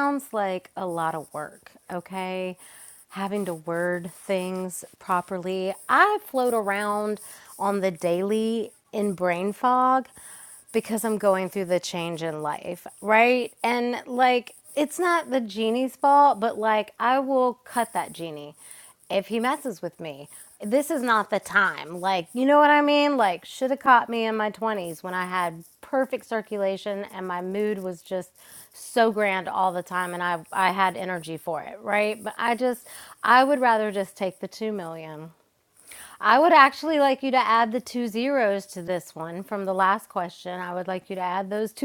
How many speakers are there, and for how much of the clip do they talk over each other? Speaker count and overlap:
one, no overlap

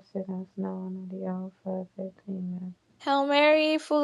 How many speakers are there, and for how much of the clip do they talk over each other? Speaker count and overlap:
two, no overlap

